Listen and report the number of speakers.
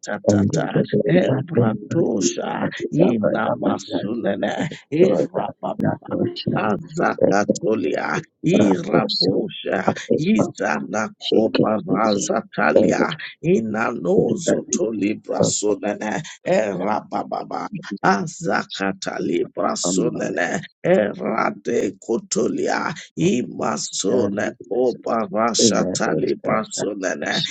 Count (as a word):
two